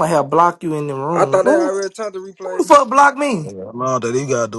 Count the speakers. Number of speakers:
three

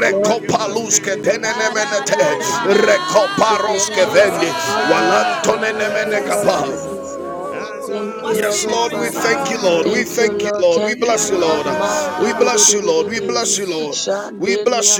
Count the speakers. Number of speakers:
two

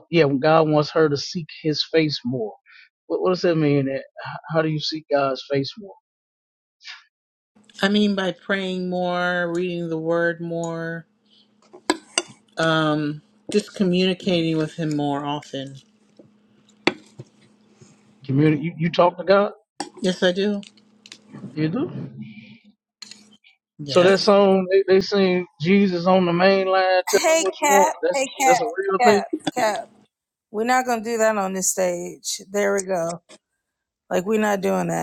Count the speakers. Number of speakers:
three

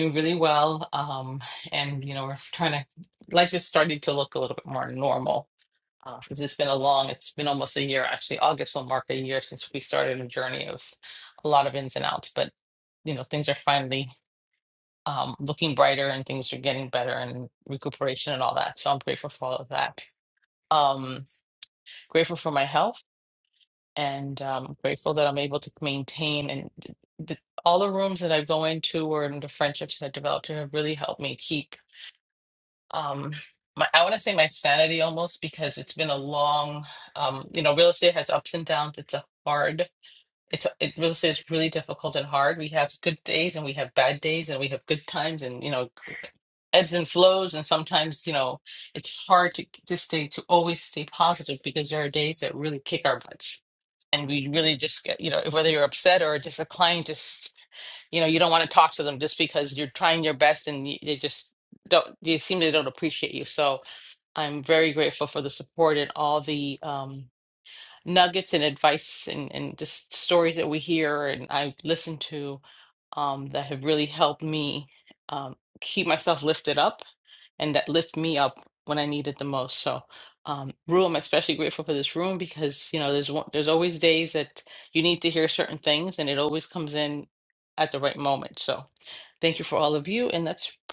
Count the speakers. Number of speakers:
one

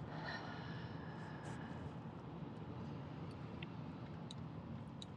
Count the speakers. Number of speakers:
zero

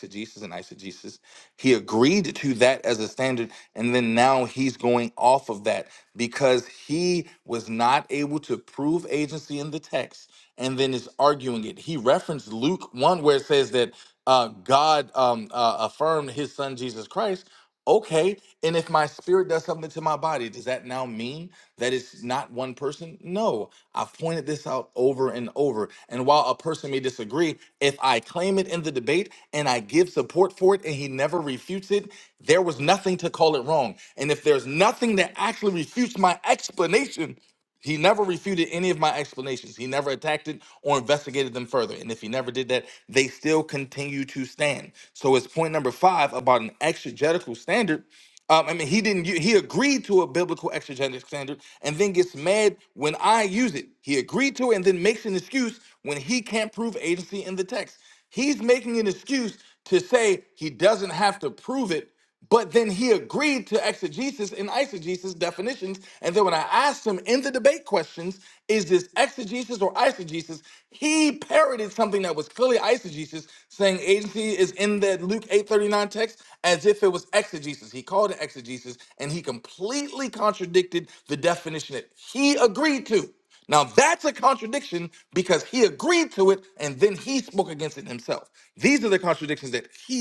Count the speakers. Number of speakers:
one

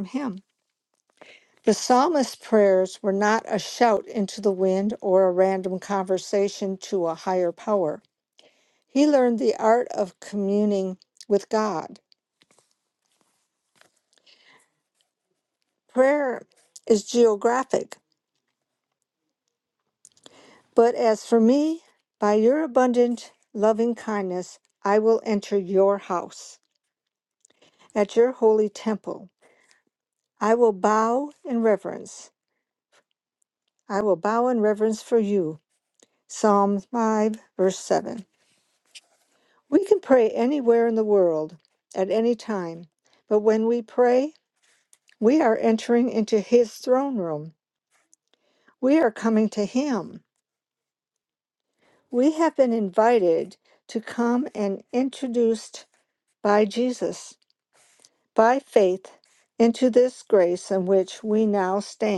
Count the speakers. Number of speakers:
one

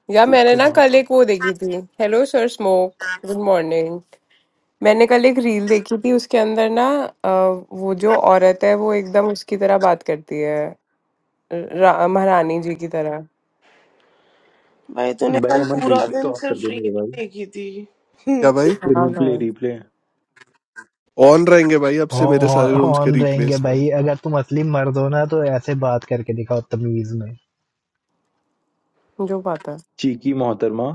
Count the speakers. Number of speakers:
five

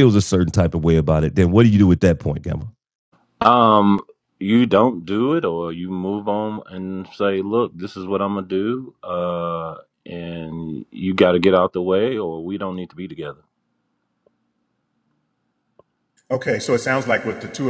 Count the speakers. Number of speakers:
three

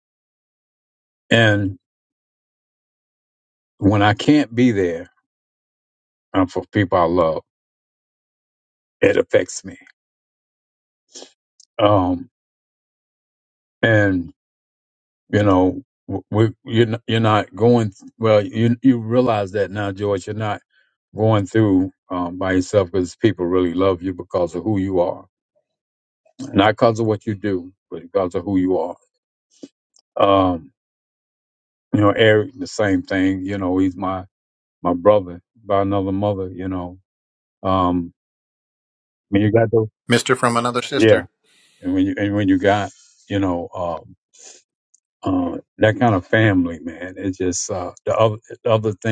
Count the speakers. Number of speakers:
two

